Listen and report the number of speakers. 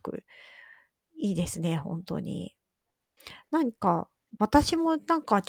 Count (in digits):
1